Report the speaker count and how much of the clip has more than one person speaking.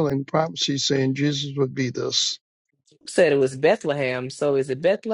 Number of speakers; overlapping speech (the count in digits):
2, no overlap